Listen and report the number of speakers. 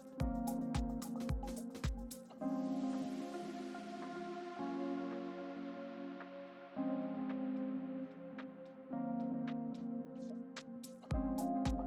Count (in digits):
0